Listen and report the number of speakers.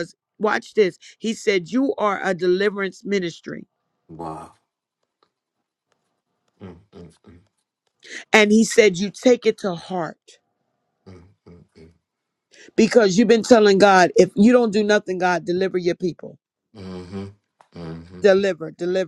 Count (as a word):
two